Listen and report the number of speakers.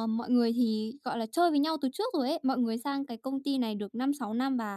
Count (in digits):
1